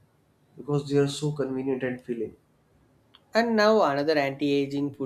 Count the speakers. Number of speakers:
2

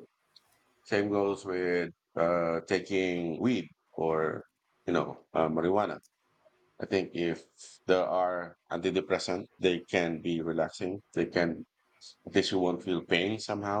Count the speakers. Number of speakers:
1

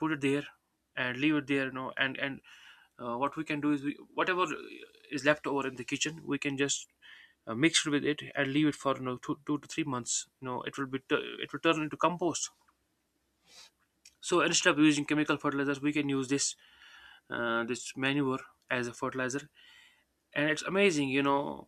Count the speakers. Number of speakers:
1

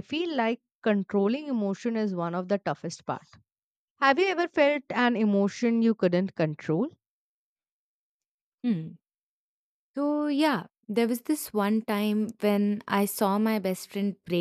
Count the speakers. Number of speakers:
2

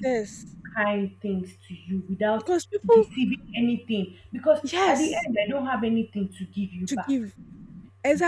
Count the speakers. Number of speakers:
2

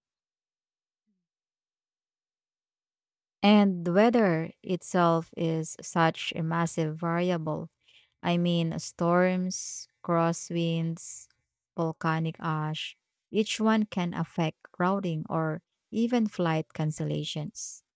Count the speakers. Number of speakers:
1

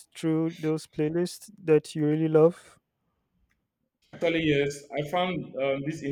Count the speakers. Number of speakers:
2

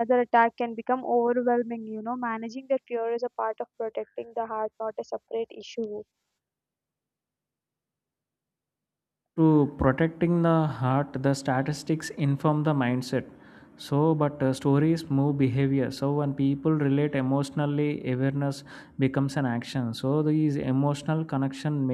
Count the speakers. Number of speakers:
2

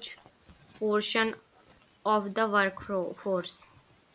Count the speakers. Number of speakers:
1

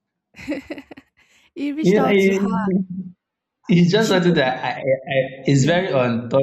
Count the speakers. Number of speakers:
2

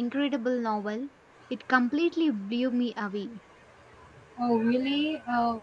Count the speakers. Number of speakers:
2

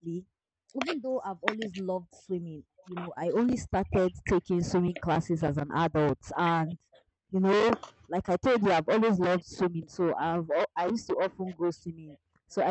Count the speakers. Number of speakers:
1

